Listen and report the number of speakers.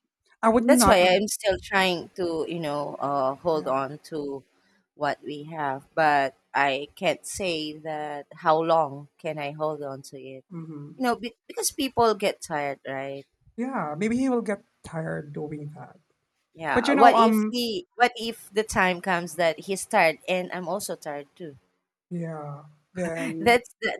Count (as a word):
two